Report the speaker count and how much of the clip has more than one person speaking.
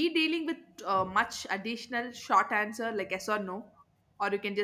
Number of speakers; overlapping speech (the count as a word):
one, no overlap